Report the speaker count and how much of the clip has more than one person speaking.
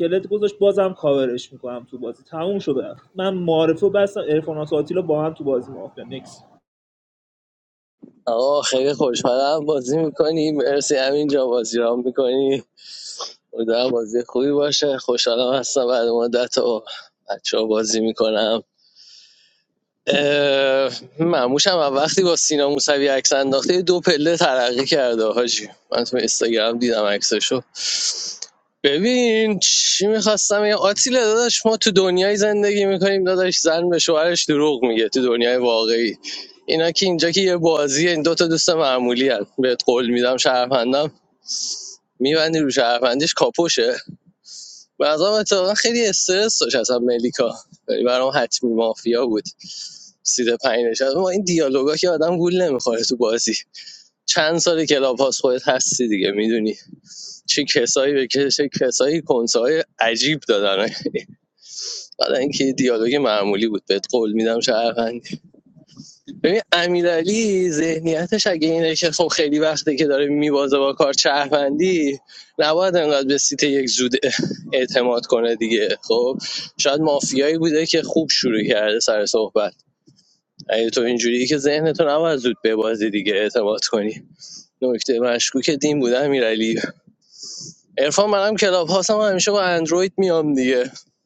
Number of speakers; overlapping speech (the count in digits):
2, no overlap